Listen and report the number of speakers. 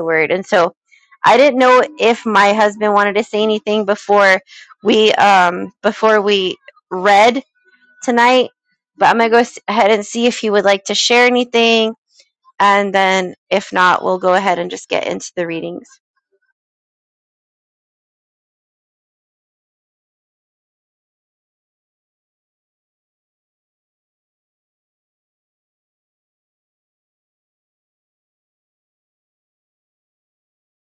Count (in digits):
1